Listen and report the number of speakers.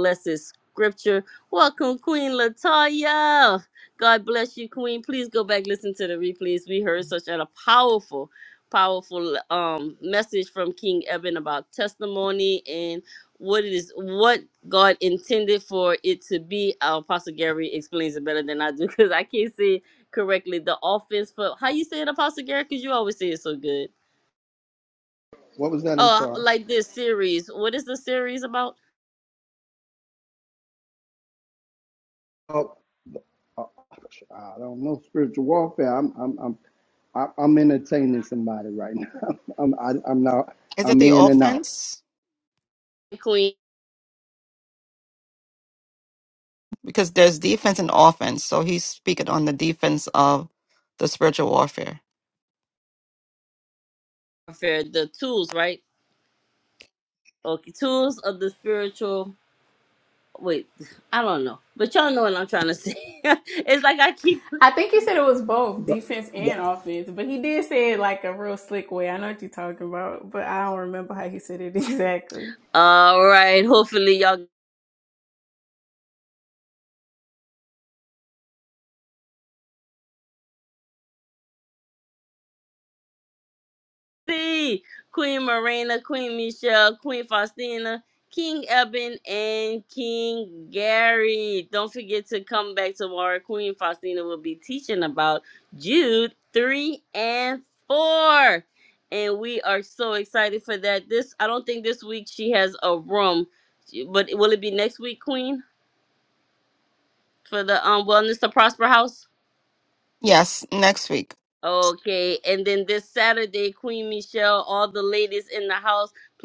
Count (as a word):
four